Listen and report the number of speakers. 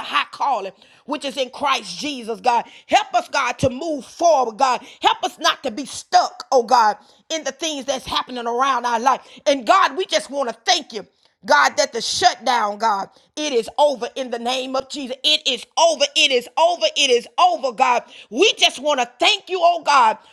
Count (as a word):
one